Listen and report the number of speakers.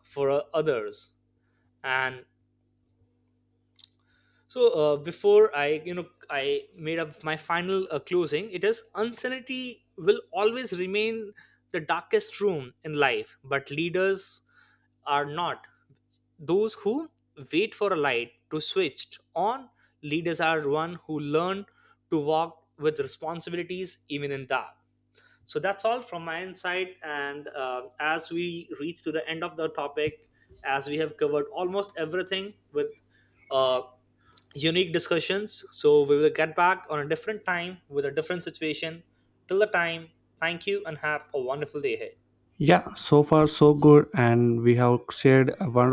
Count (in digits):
2